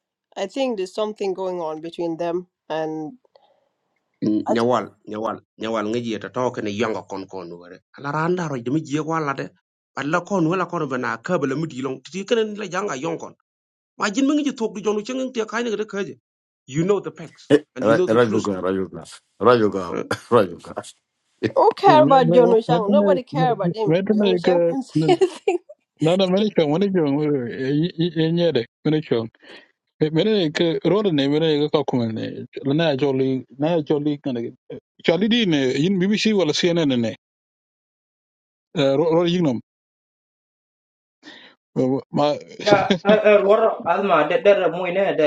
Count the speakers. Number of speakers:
5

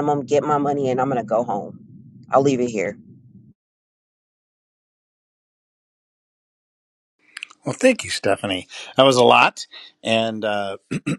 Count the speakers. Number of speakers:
2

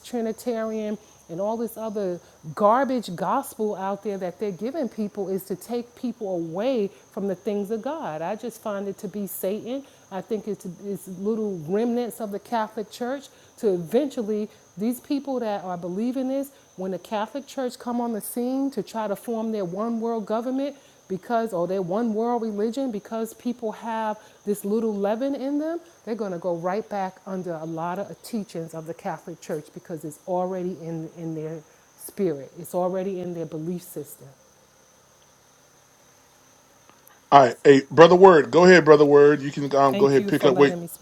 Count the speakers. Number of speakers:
2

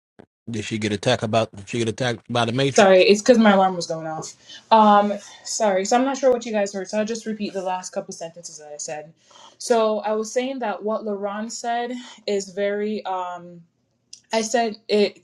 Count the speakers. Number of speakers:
2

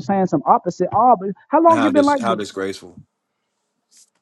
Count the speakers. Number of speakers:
2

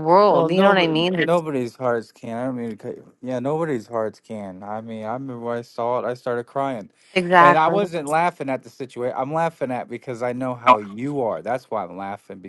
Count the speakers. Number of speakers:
2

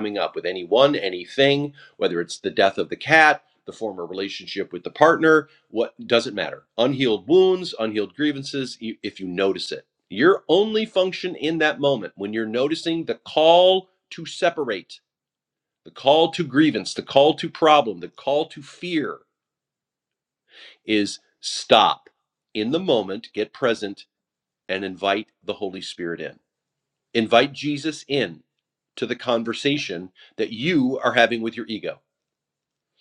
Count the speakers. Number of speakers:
1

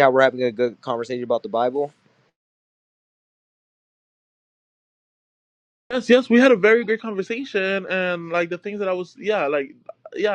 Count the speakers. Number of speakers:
2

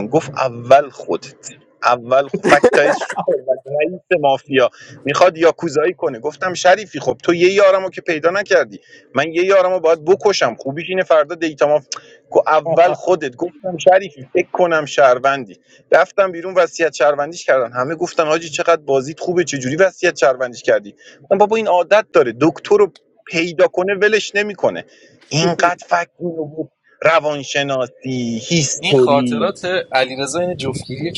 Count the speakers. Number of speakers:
2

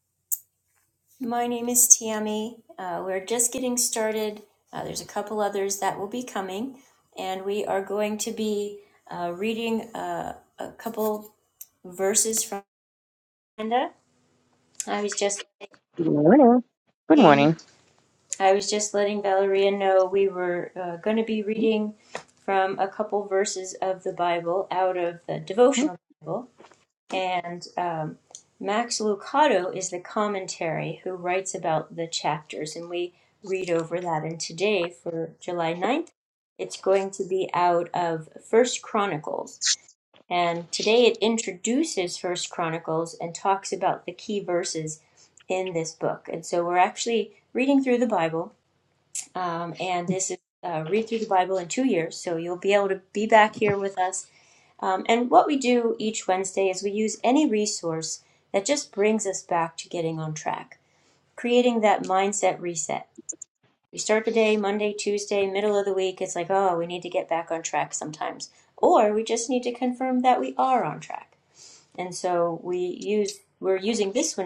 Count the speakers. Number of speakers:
2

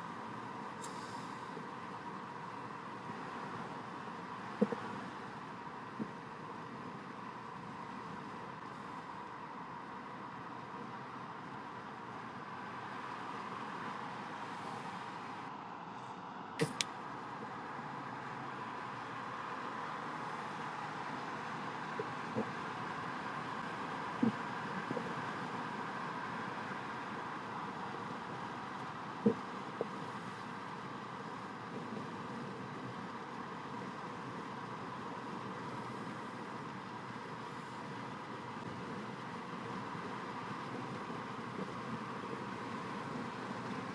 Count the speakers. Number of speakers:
0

